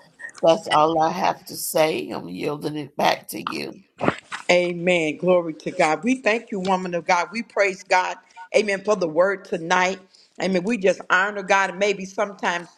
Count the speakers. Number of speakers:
2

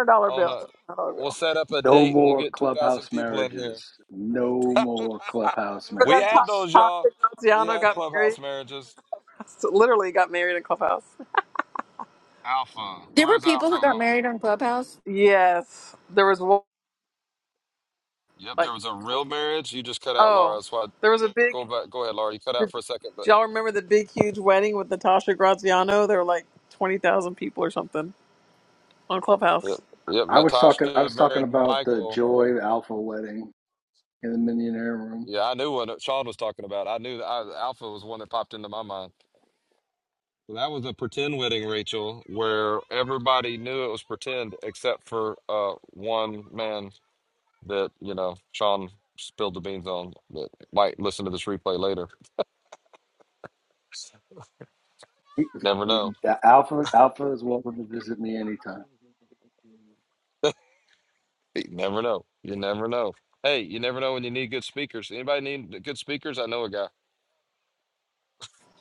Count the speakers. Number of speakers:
4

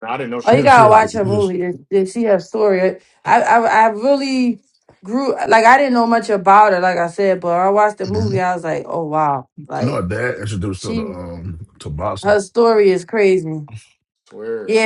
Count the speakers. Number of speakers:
3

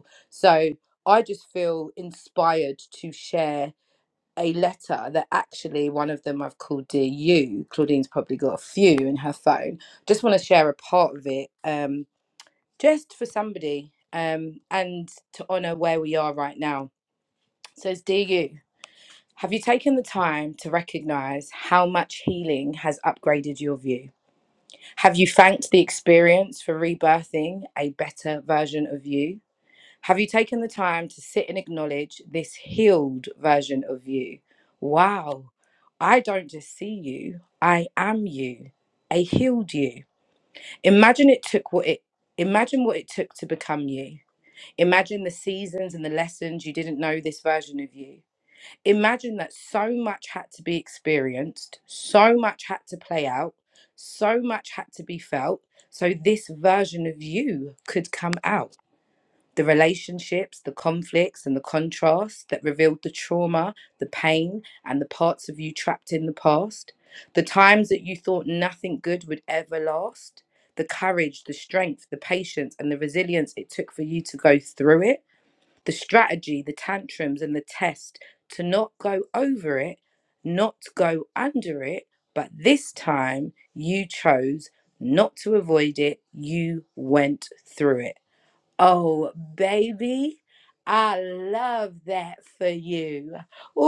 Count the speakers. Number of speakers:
1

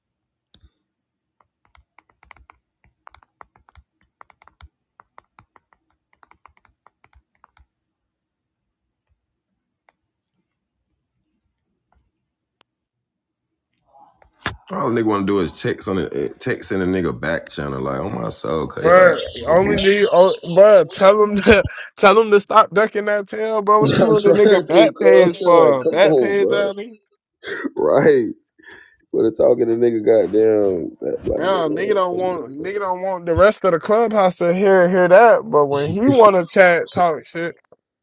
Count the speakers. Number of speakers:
2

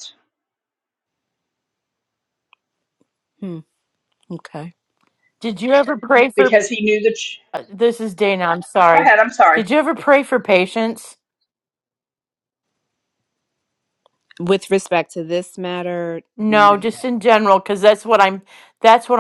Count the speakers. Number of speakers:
3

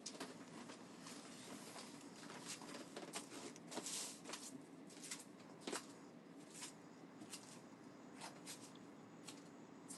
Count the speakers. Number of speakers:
0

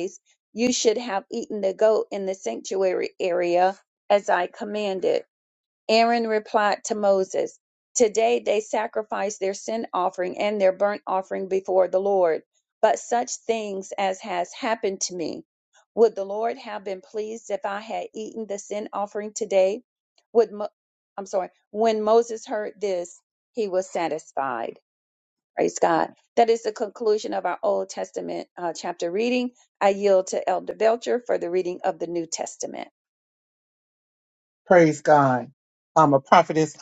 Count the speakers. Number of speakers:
2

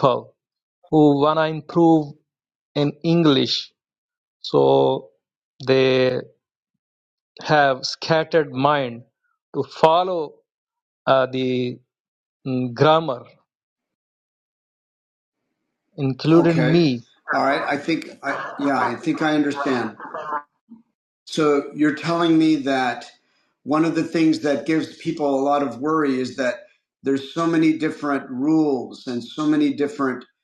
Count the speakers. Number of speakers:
2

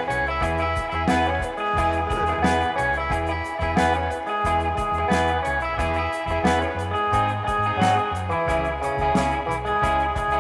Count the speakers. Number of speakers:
0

